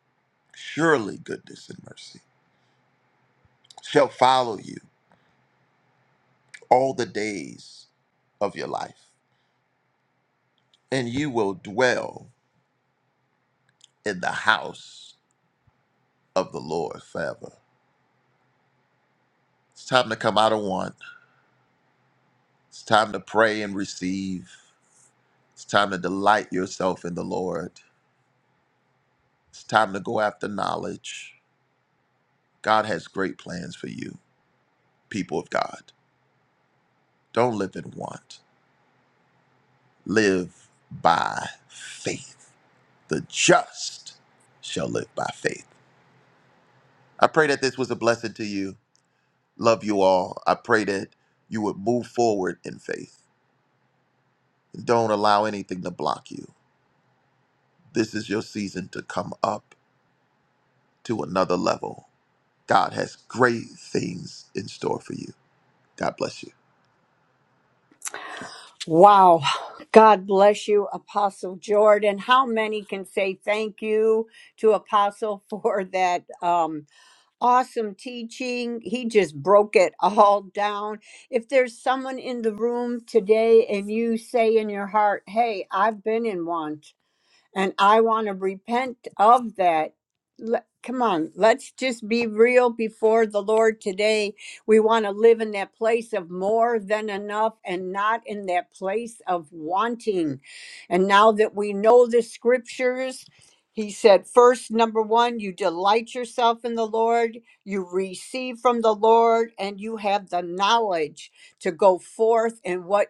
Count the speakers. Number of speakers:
two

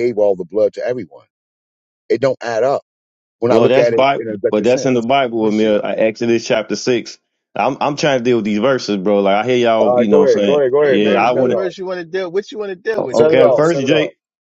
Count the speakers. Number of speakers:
three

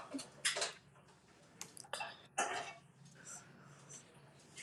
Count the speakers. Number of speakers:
zero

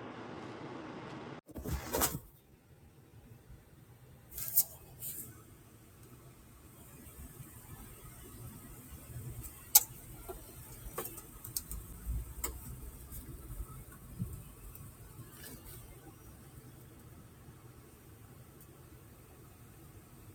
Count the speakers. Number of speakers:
zero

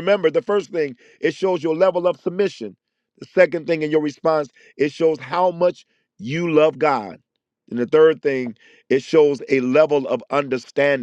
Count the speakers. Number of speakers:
one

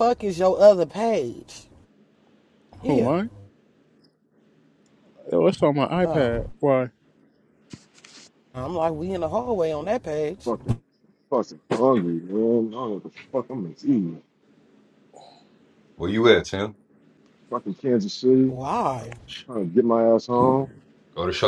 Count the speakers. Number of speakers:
four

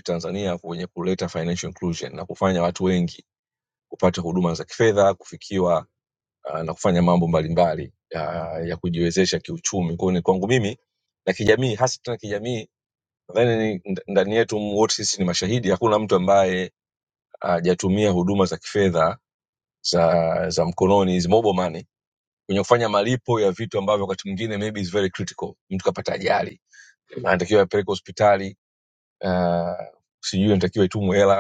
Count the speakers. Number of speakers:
one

